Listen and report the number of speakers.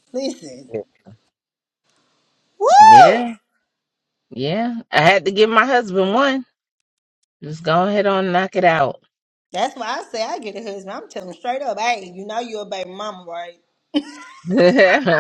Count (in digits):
2